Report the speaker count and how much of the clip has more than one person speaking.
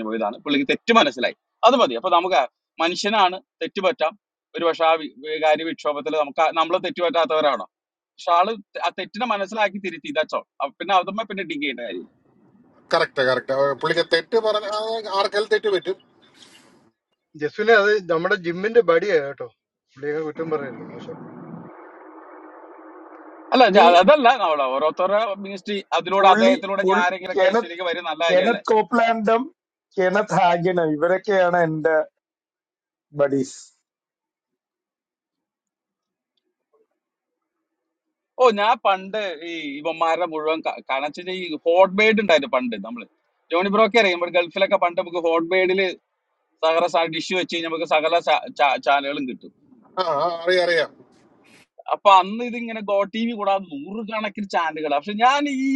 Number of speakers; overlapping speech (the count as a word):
four, about 4%